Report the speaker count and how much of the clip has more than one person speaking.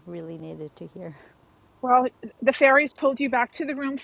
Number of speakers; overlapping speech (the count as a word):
two, no overlap